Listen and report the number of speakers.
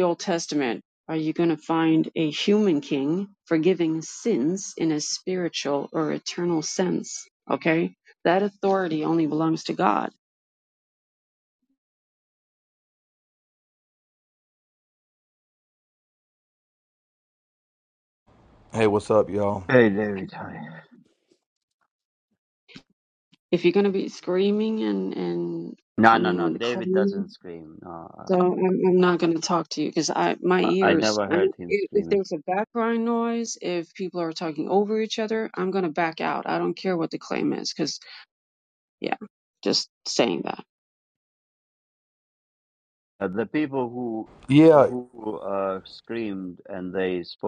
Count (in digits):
3